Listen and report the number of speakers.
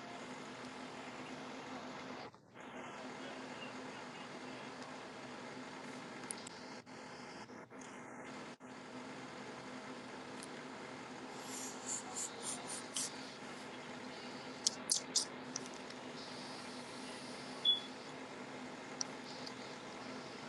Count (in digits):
0